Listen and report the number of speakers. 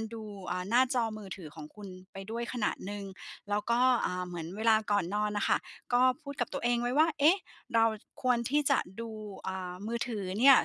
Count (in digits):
1